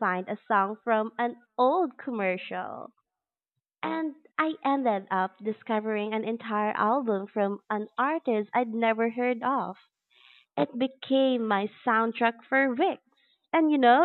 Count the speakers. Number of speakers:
one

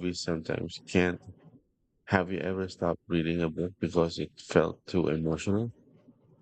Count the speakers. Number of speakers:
one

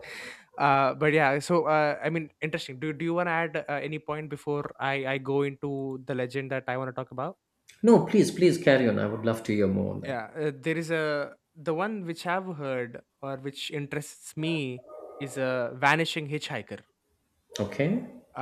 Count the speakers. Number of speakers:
two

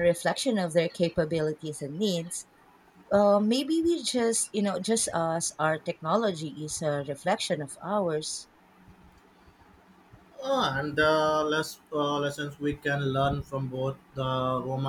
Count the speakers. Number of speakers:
two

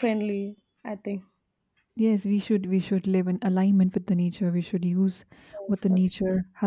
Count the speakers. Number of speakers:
two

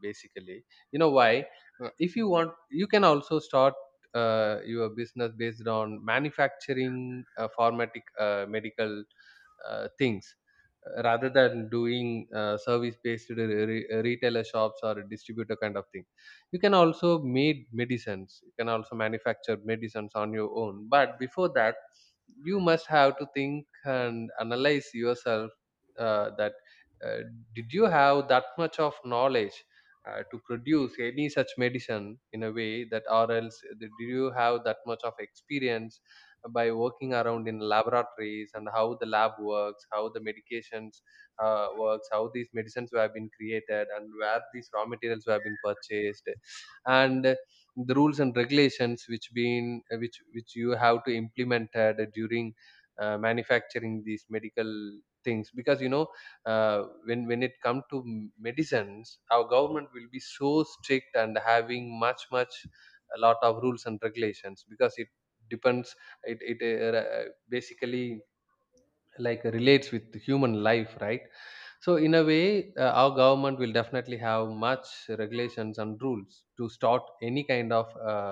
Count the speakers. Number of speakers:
one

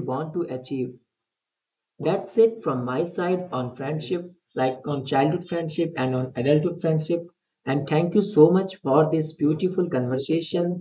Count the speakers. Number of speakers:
one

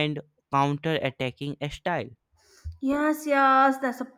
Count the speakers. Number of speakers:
two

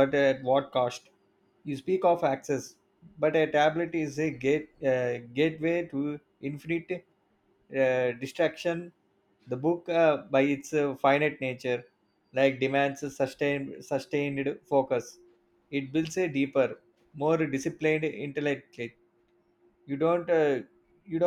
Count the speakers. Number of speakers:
one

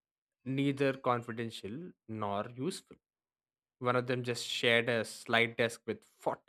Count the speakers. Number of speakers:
one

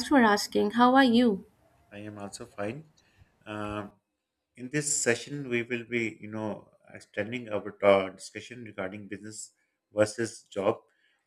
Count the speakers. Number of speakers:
two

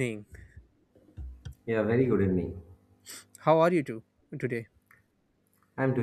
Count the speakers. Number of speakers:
two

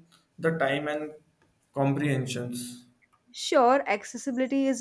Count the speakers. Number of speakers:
two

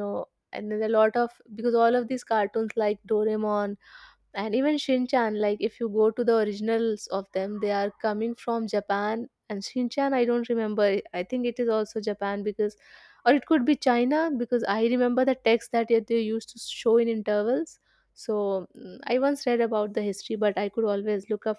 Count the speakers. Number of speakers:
one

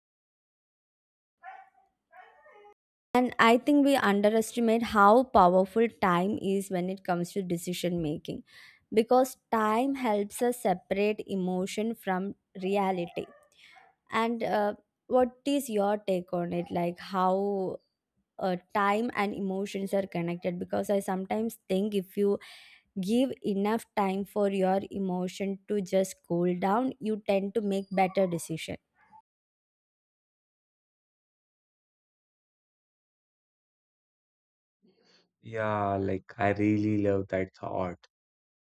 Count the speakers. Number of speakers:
two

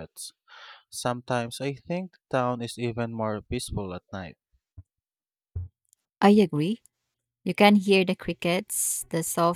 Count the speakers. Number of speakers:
two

